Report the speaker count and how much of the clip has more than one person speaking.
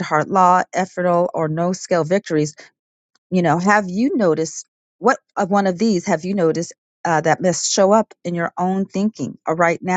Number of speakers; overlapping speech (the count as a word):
one, no overlap